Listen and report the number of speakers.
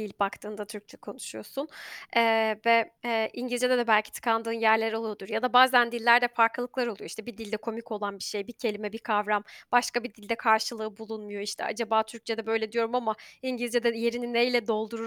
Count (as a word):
one